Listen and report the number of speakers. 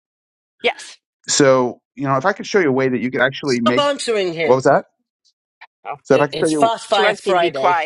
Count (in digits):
3